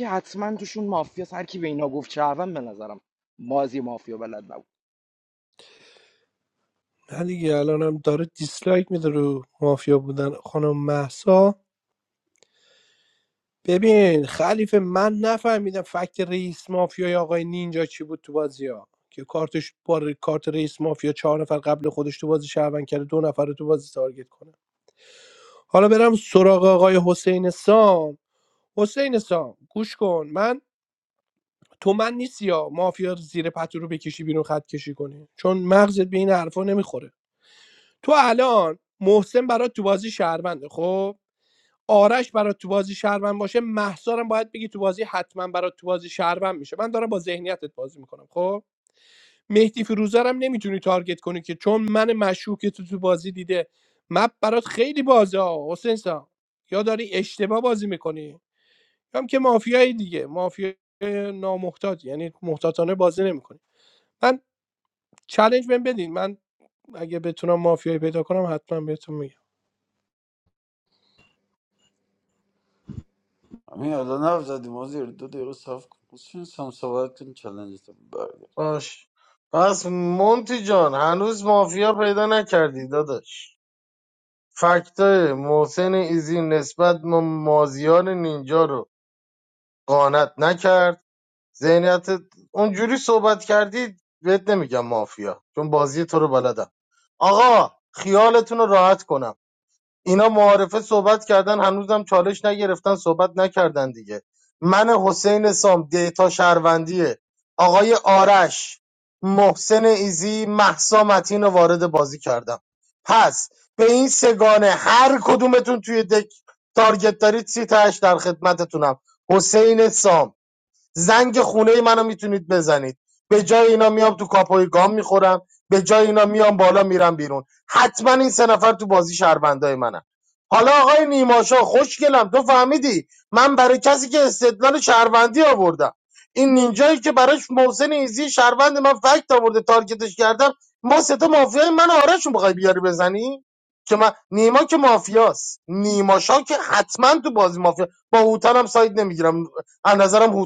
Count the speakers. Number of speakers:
4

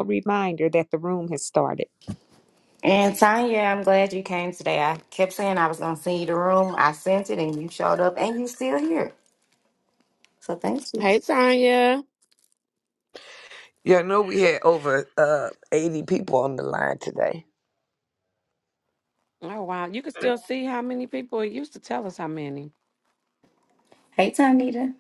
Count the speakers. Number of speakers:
4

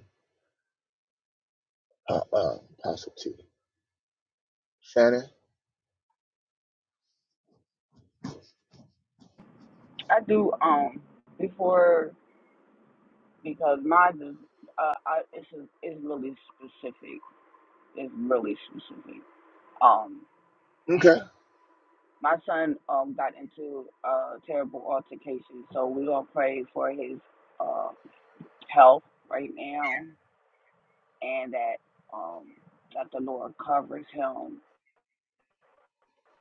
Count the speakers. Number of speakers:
2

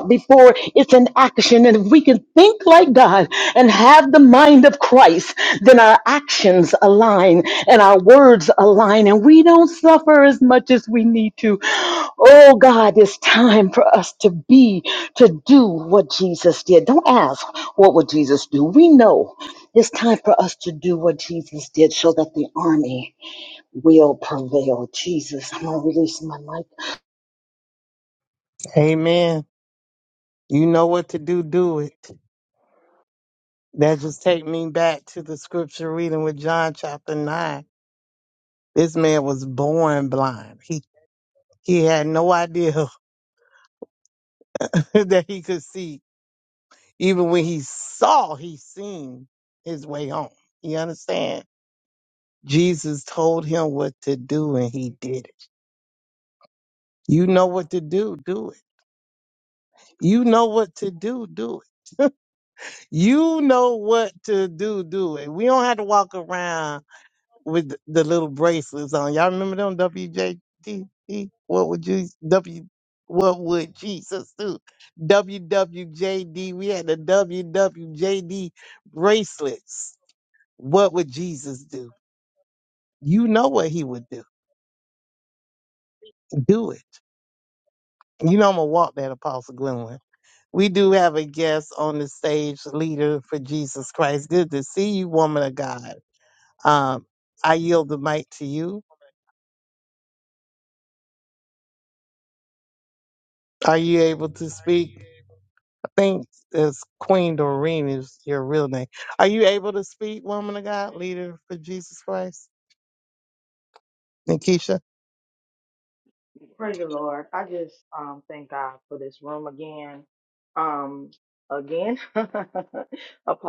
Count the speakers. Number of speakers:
3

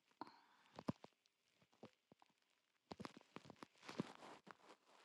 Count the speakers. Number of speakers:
0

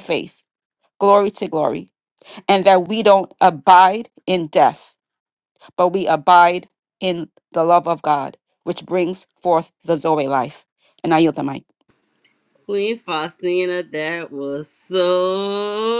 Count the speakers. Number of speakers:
2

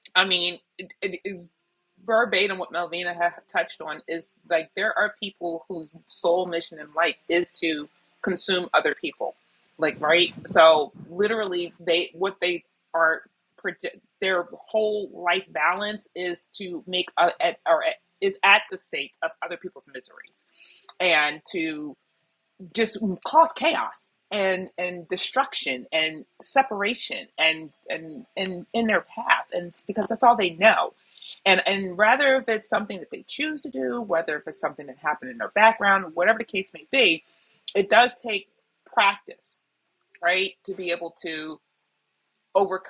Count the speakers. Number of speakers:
1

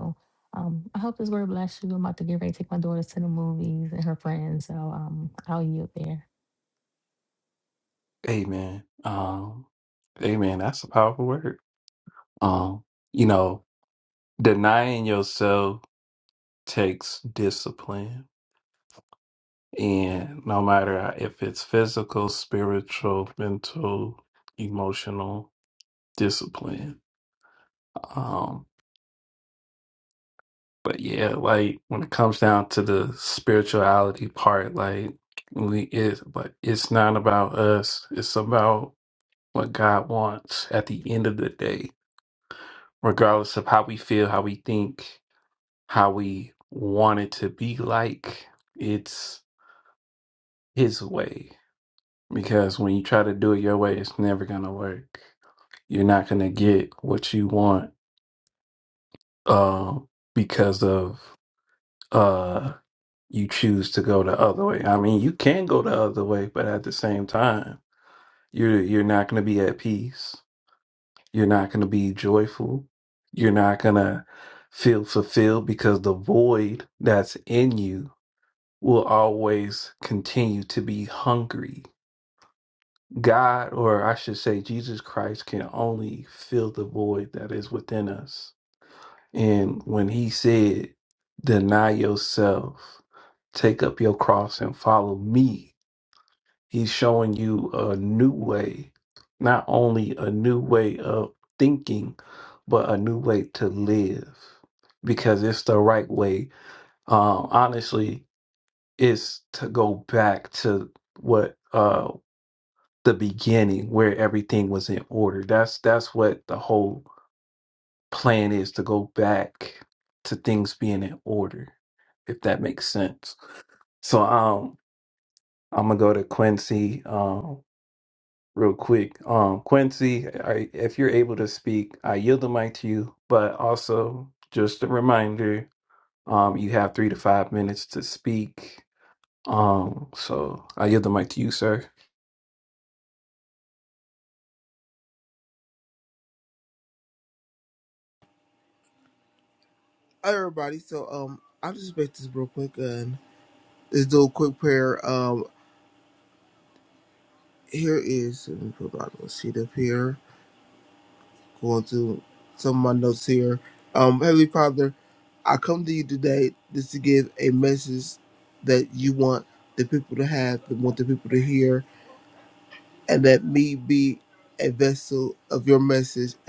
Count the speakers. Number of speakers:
3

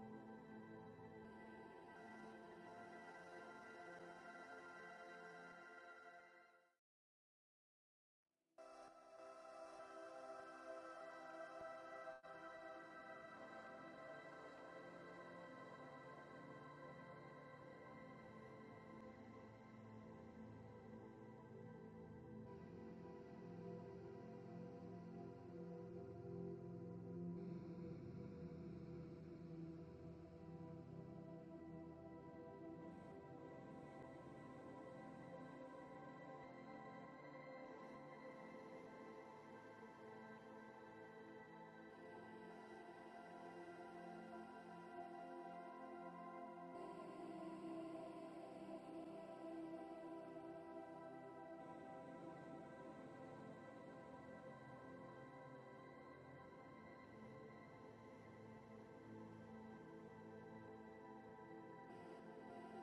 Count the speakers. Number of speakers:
0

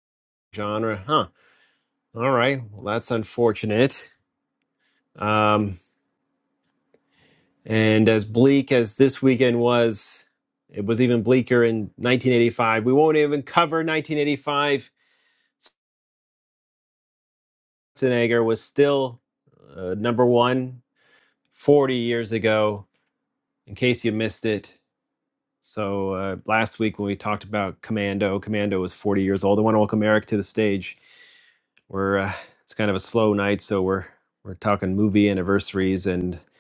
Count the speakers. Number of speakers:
1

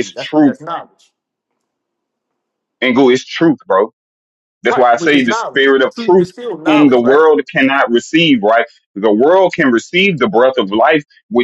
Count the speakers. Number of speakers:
2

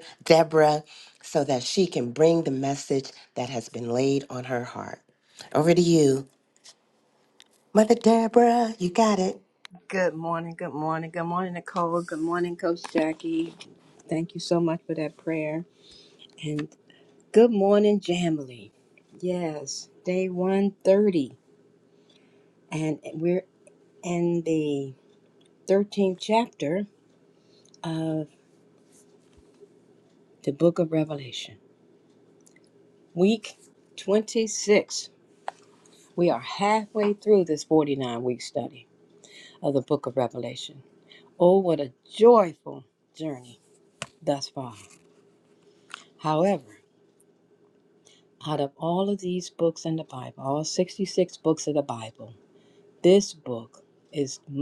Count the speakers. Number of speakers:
2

